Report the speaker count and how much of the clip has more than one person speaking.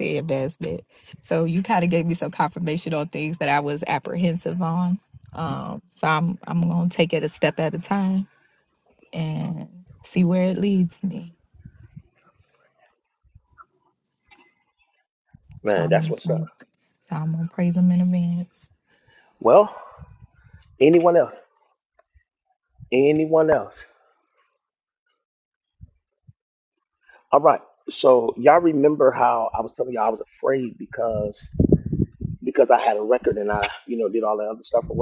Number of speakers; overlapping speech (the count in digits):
2, about 2%